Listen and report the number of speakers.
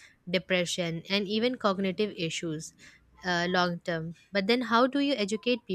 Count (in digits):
1